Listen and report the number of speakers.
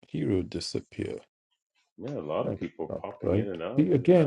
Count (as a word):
two